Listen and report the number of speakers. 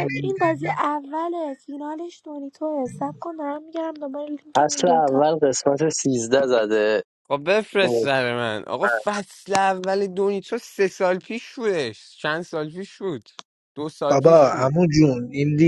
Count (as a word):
four